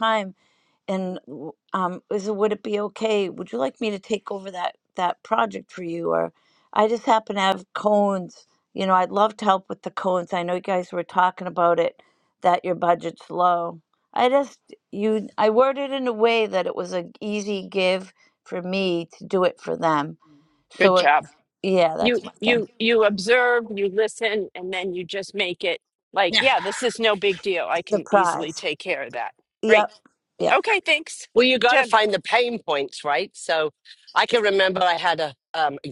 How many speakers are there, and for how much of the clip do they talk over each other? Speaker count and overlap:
three, about 6%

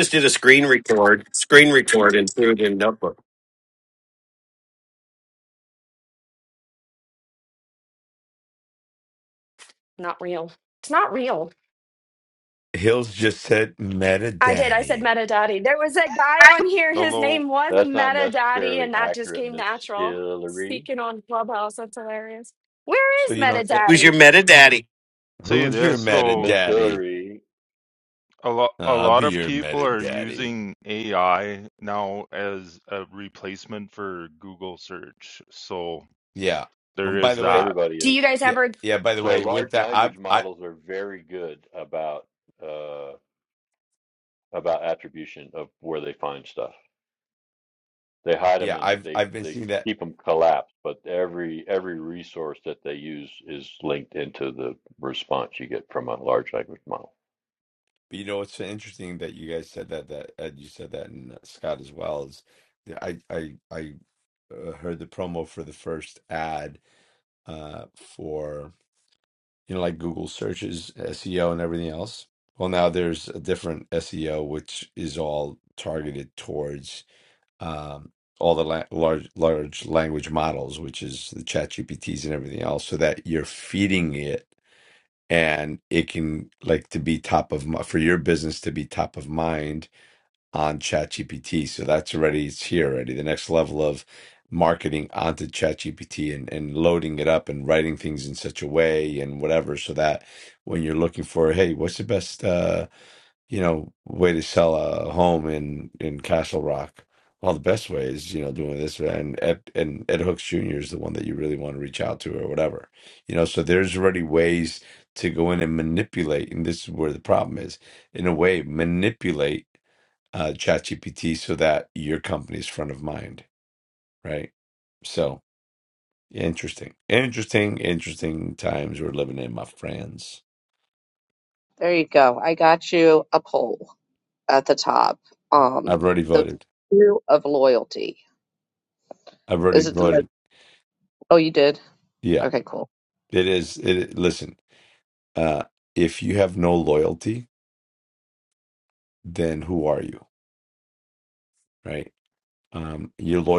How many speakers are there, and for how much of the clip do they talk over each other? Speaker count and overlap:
six, about 8%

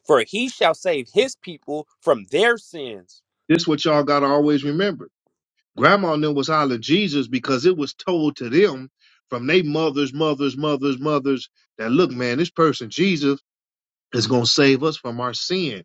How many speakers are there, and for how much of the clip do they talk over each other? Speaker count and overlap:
two, no overlap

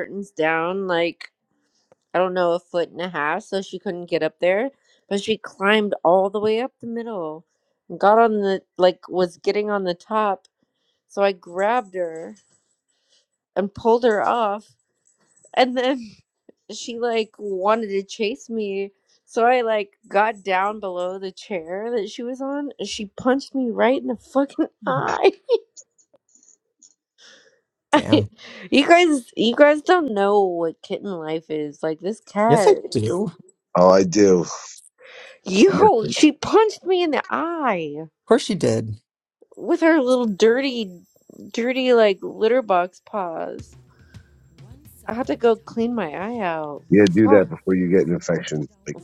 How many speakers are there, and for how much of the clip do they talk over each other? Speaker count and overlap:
three, about 2%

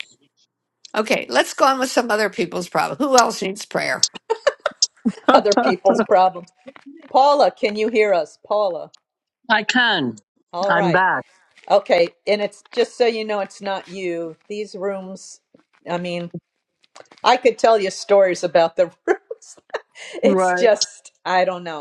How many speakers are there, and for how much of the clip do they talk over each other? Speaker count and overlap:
three, about 4%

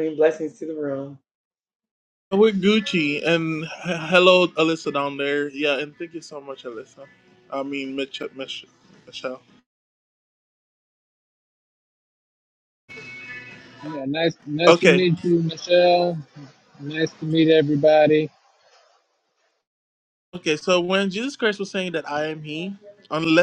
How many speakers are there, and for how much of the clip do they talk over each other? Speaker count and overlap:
three, about 2%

